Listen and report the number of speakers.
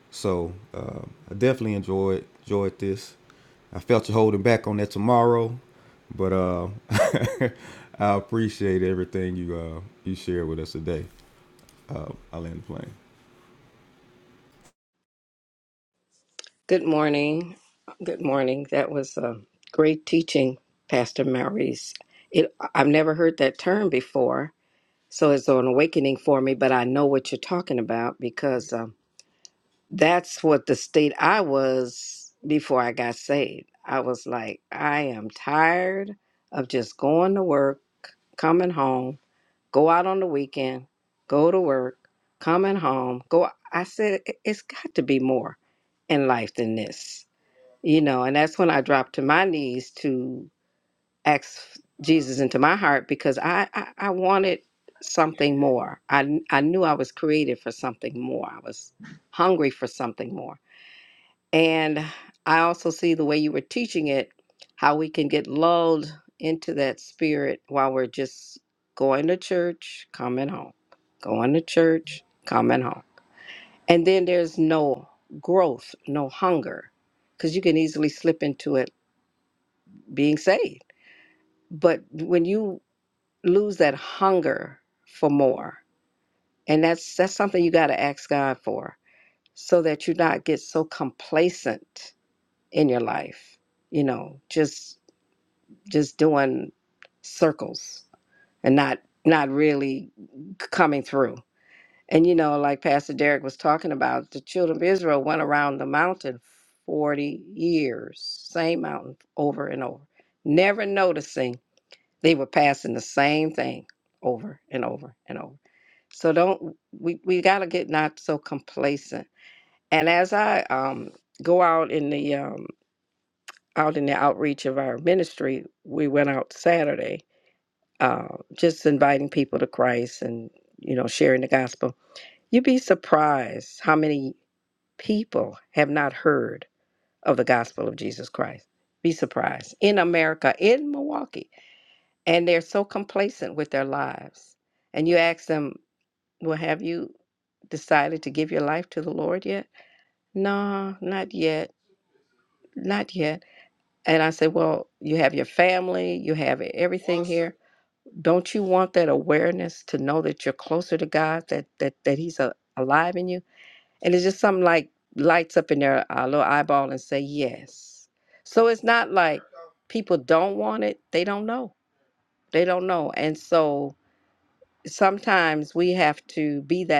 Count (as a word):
two